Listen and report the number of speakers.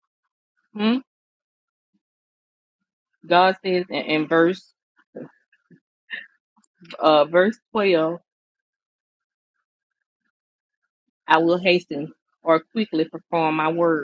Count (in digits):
1